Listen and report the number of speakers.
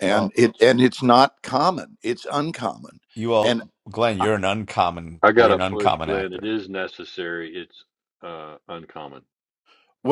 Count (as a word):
three